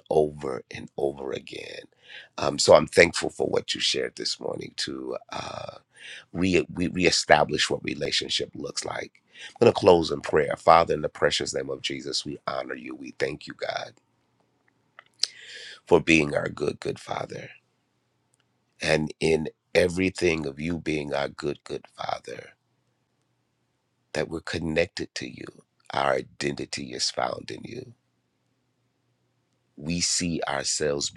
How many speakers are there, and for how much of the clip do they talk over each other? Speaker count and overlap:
one, no overlap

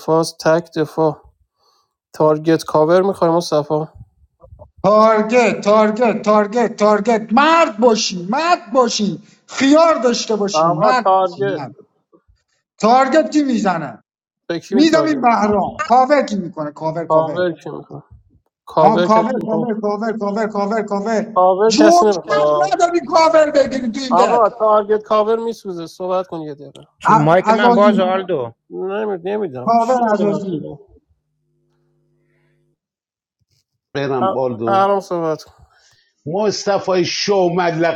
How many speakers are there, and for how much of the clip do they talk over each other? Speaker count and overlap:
four, about 15%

